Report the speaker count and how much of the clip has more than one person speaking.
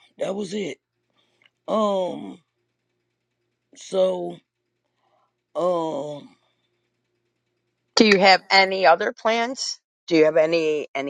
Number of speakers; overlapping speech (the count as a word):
two, no overlap